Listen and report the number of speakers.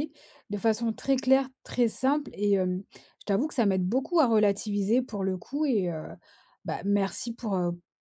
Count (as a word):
one